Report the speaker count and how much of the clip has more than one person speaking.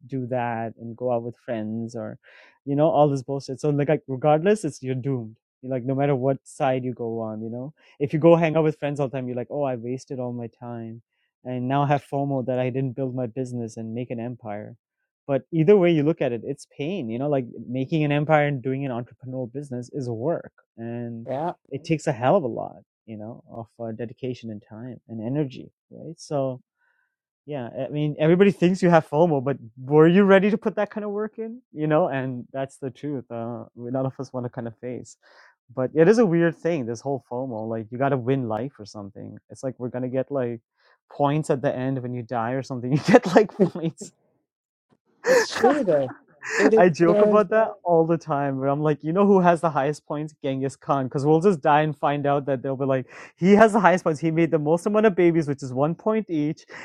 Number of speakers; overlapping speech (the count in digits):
2, about 1%